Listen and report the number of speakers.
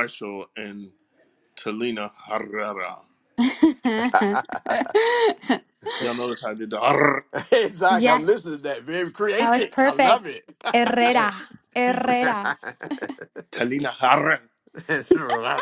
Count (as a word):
three